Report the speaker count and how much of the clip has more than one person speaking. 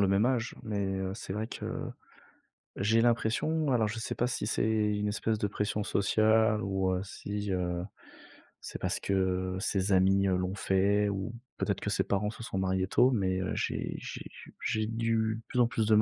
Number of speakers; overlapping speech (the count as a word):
one, no overlap